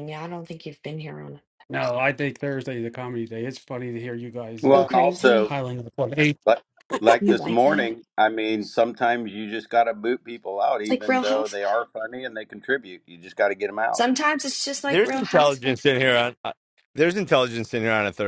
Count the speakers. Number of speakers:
four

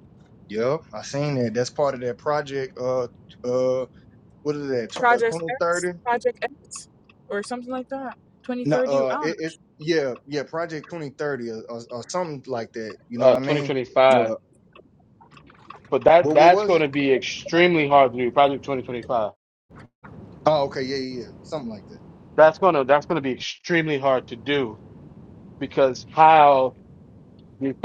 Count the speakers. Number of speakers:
three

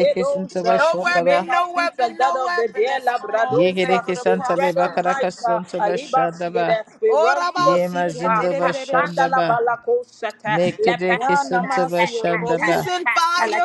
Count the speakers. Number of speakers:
three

